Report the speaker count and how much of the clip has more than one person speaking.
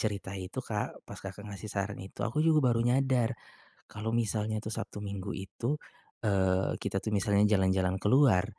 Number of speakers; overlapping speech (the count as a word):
one, no overlap